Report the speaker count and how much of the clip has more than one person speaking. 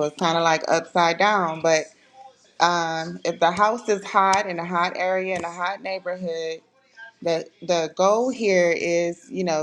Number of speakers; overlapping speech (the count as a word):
one, no overlap